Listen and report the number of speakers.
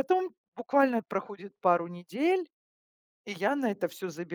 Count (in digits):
1